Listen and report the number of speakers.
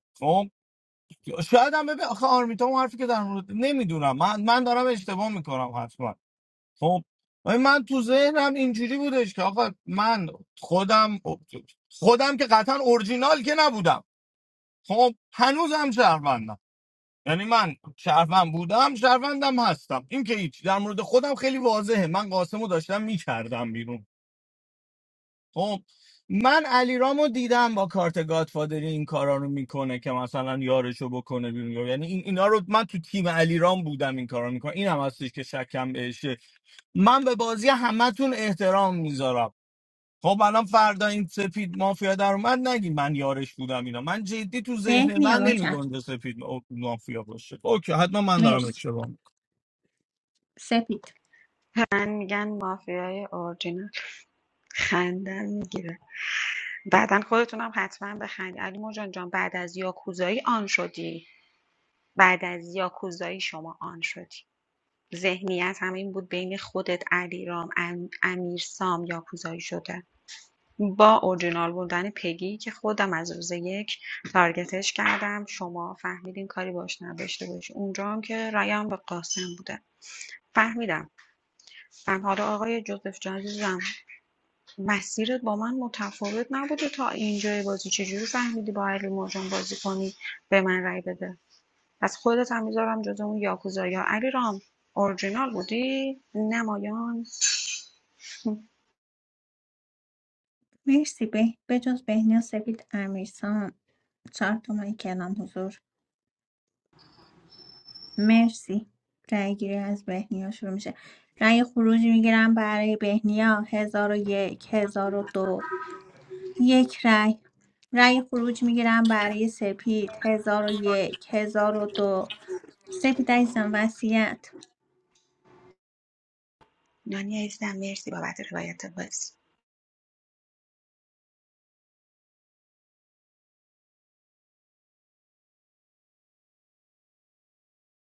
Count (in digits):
3